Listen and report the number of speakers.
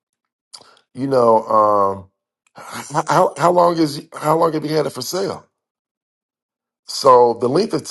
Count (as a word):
one